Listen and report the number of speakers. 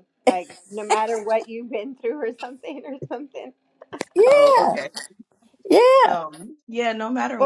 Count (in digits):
3